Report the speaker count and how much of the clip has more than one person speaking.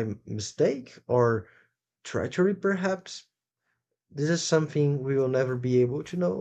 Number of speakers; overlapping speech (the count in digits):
1, no overlap